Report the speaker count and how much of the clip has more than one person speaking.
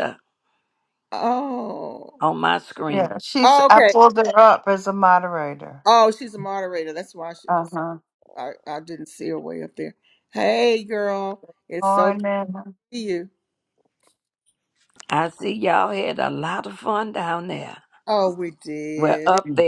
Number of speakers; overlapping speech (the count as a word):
three, about 8%